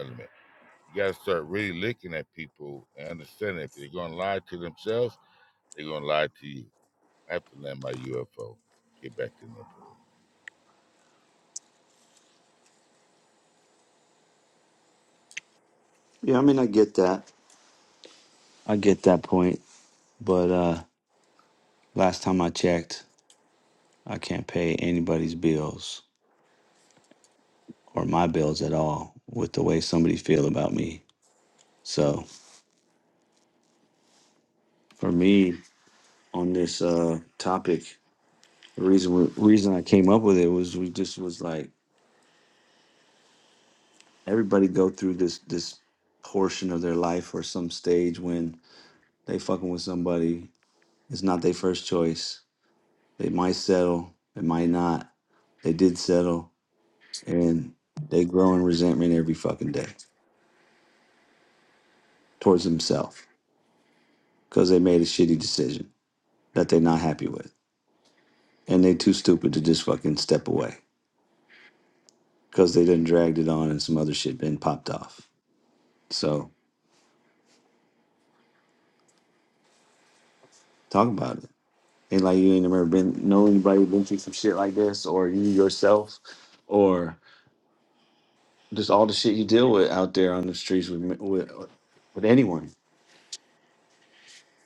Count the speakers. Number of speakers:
two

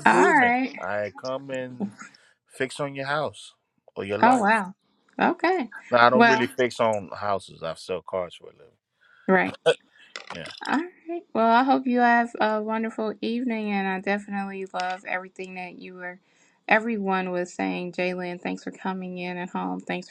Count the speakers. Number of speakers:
two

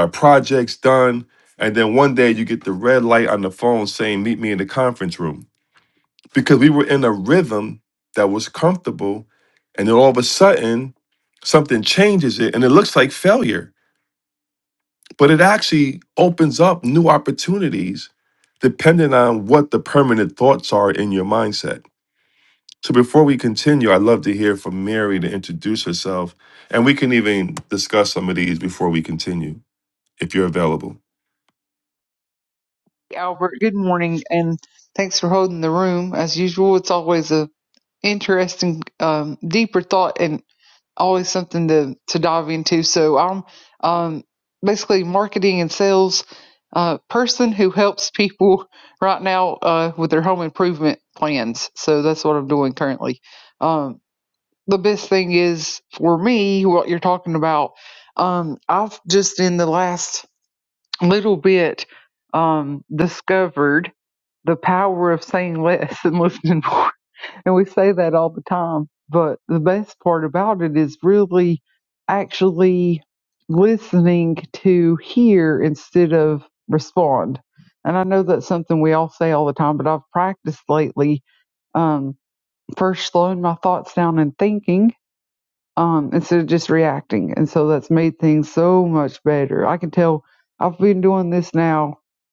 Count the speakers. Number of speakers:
two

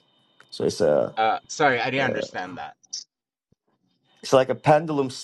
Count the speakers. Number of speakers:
two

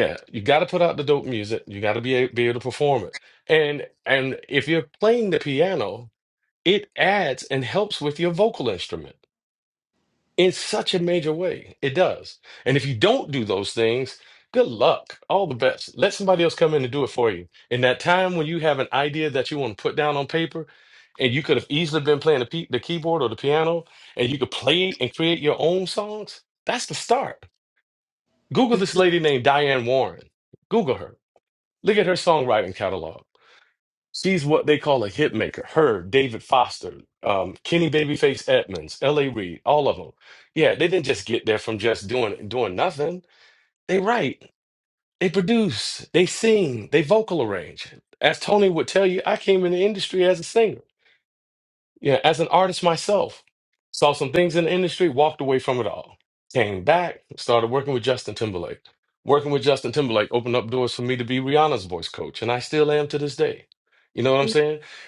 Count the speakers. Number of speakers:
one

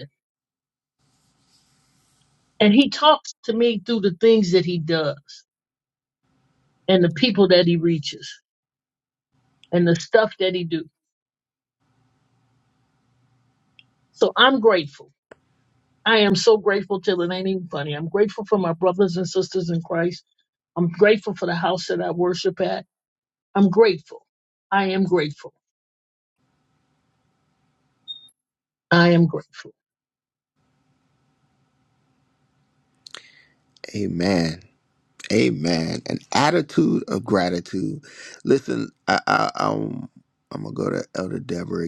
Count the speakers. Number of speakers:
two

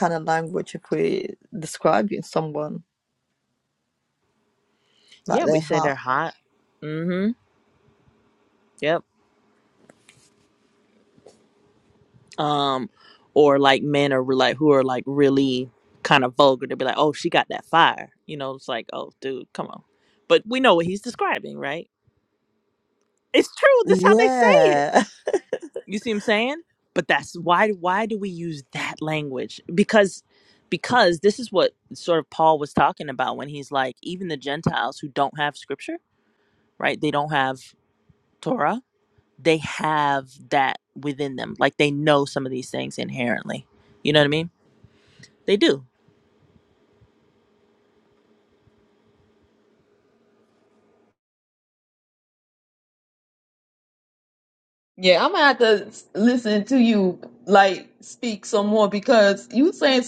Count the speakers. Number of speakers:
three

